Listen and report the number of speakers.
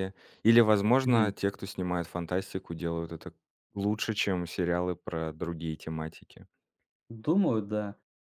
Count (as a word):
two